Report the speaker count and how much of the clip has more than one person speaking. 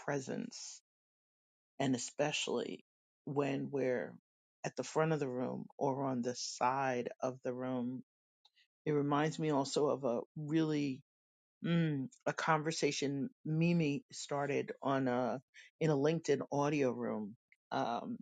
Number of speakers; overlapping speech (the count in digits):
1, no overlap